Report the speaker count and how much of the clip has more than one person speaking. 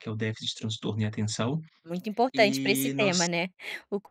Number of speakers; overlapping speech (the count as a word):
two, about 23%